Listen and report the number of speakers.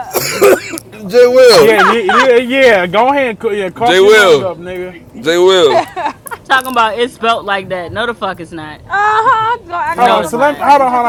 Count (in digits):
4